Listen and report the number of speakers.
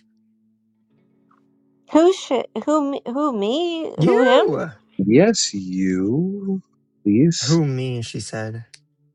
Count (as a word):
three